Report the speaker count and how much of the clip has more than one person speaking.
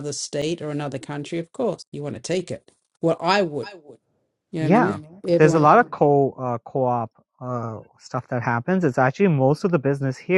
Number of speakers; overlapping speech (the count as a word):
two, about 7%